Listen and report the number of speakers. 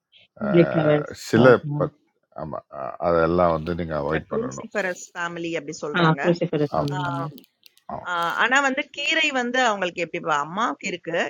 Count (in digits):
3